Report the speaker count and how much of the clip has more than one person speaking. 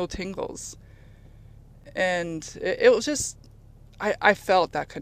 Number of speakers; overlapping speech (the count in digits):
1, no overlap